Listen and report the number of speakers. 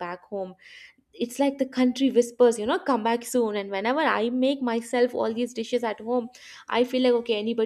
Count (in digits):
1